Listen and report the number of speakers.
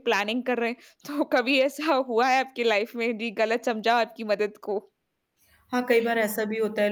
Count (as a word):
two